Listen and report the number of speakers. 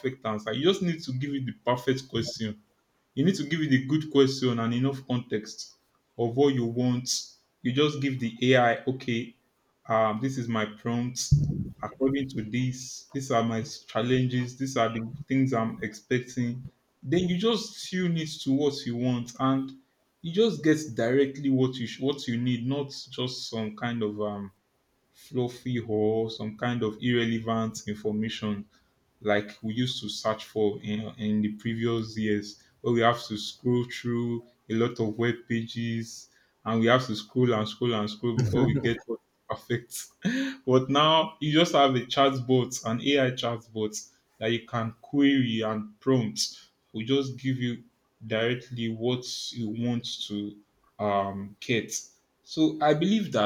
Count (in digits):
1